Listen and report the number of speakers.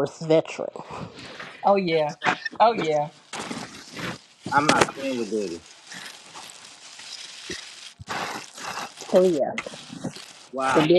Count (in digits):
3